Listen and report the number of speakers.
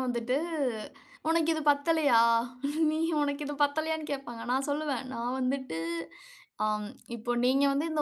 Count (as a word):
one